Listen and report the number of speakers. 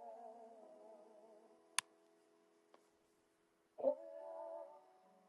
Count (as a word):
zero